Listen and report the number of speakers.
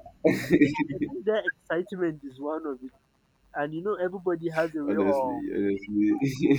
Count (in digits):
2